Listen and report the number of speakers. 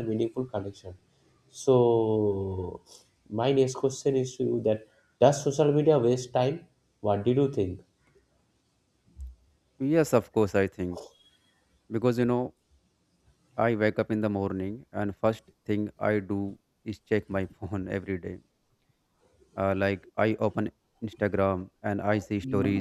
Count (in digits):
2